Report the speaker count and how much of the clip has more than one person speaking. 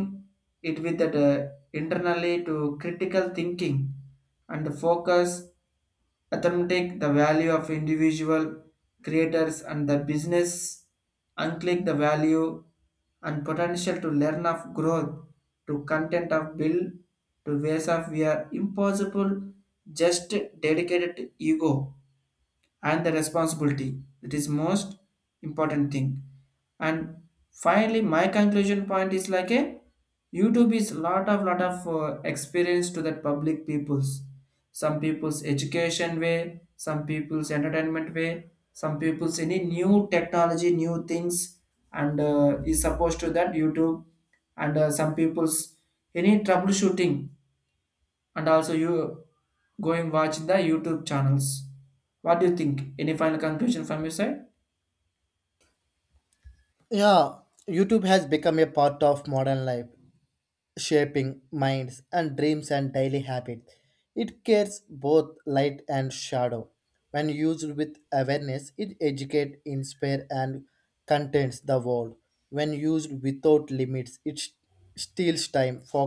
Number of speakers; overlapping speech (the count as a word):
two, no overlap